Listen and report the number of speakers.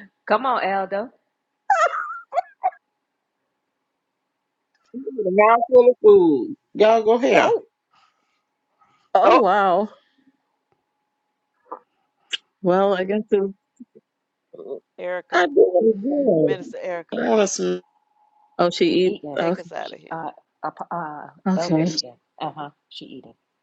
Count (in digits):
4